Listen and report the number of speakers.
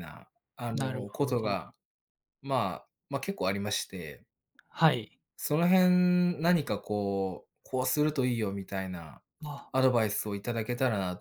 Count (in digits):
2